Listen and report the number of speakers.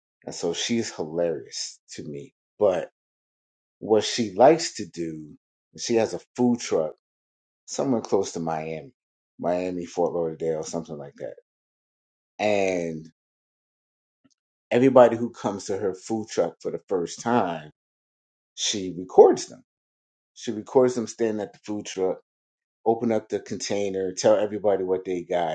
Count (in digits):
1